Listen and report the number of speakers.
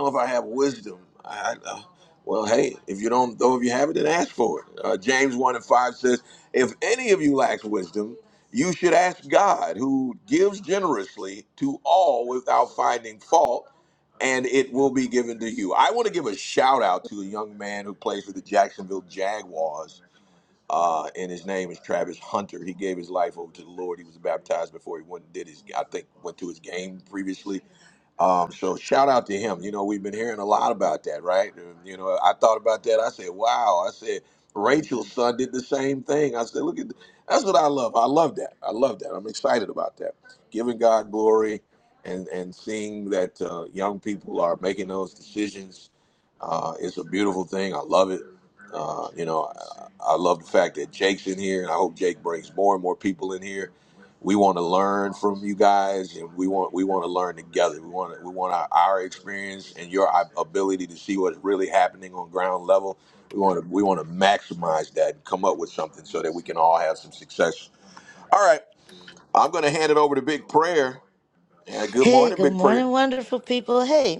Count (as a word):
two